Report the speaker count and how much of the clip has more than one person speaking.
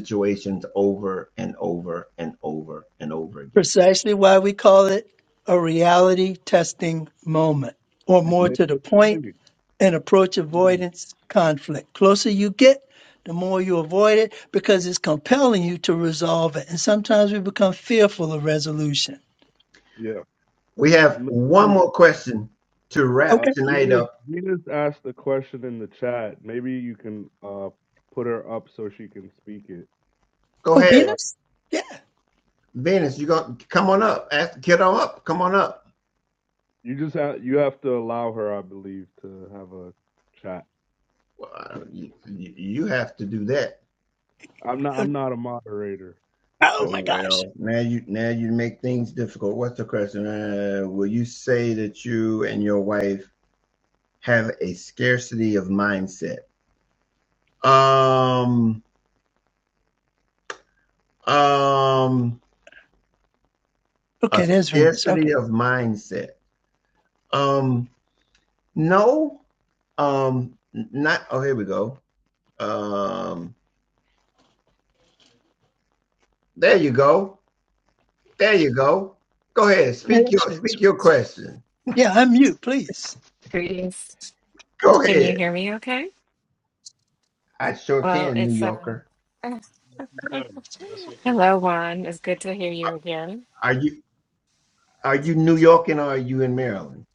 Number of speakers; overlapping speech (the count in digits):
4, about 7%